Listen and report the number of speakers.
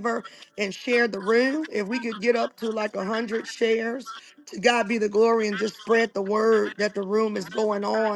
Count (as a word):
one